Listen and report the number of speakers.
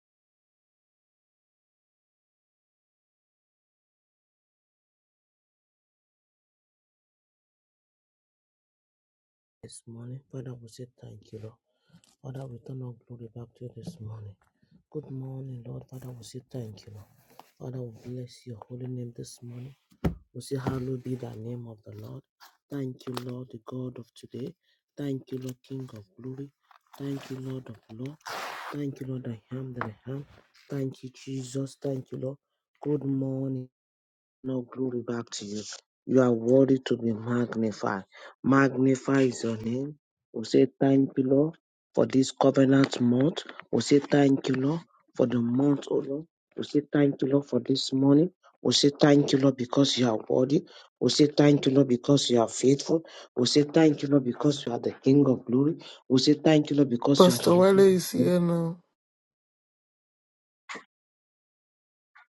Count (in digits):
2